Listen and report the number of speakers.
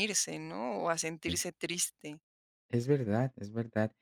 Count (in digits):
2